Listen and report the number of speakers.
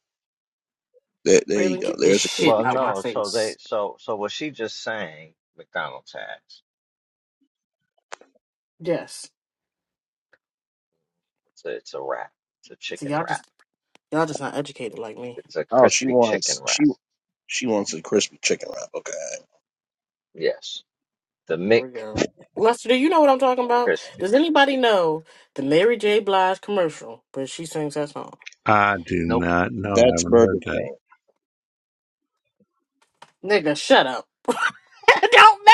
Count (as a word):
four